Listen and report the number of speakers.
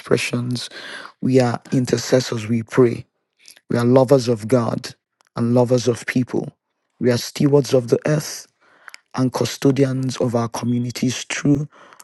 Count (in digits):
1